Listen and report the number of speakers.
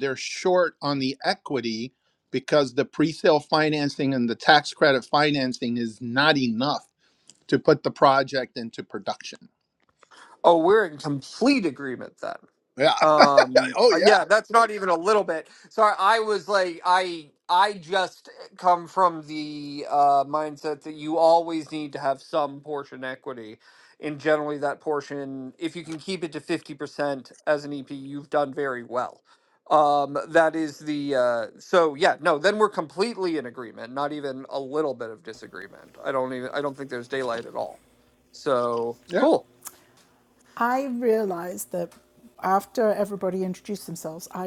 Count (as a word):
three